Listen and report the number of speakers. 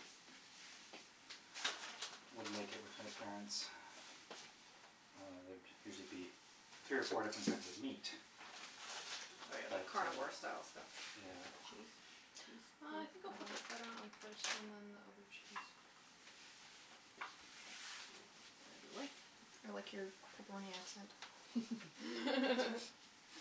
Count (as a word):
three